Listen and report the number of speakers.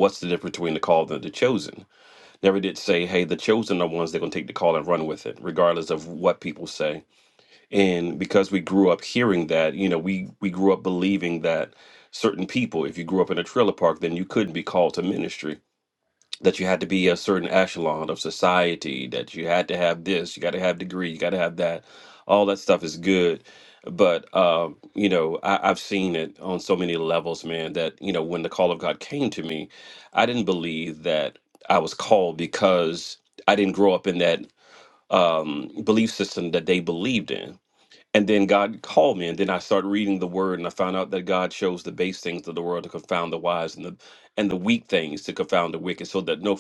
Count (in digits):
1